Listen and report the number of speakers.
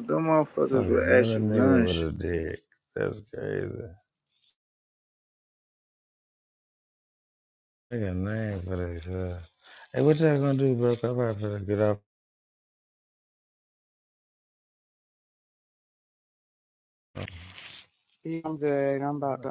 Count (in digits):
3